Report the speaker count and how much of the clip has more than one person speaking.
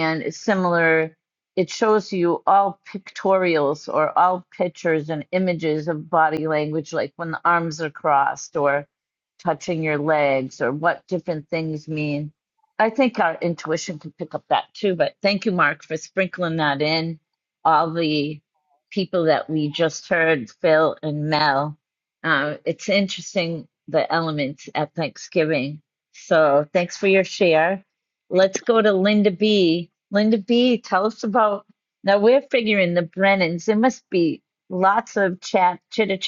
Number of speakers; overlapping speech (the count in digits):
1, no overlap